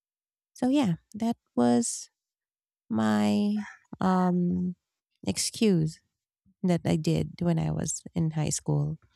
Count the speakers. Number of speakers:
1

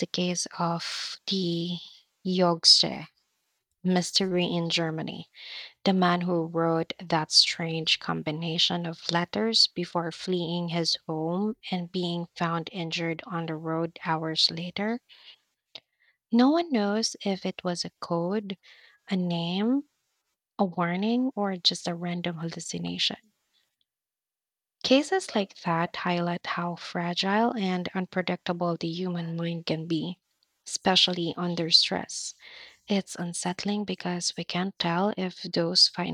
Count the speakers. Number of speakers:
1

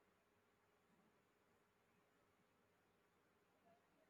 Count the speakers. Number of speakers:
0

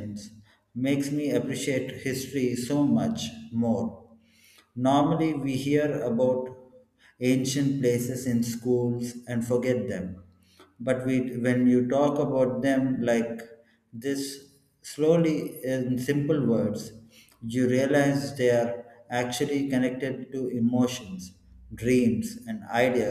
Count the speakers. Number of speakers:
1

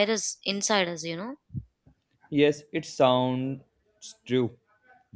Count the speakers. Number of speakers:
2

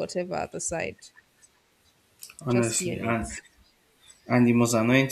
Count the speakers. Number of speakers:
2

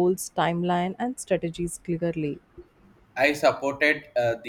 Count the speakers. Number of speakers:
2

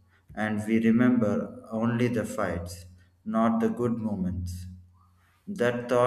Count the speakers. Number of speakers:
1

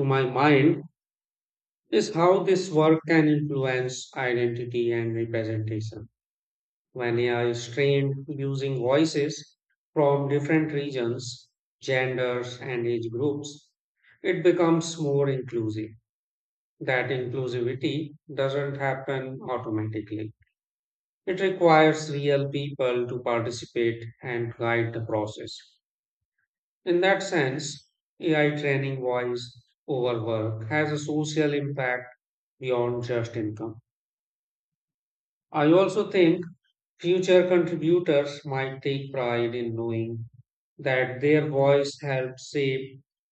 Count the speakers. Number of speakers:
1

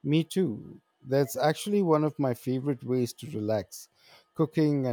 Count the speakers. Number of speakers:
1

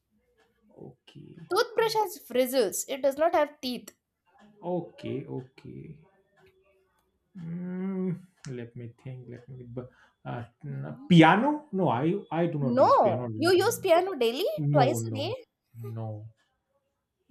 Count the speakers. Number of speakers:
2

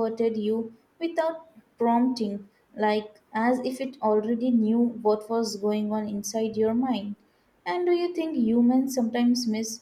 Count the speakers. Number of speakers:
1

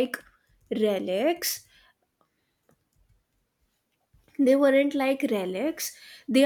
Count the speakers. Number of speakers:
1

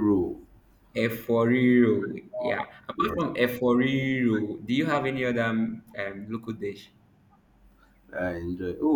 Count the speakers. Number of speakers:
2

